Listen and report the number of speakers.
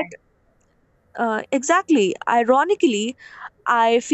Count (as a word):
one